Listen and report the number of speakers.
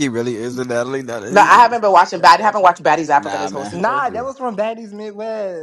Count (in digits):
3